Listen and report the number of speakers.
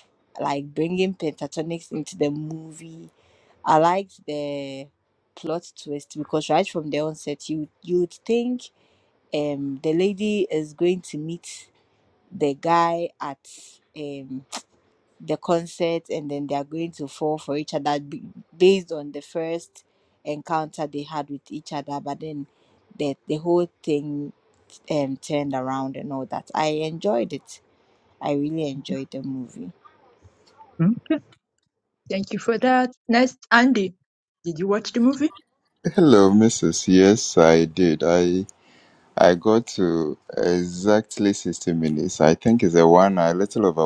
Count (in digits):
3